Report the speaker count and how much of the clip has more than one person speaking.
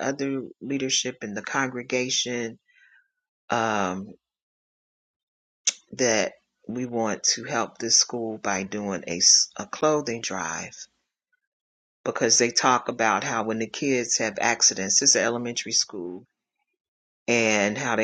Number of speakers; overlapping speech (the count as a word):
one, no overlap